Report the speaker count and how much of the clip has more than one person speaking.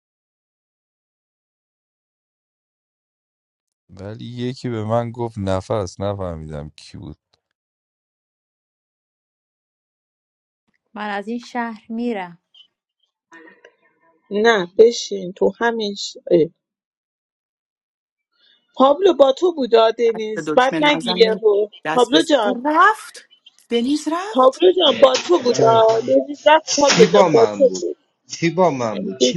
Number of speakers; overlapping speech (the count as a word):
five, about 15%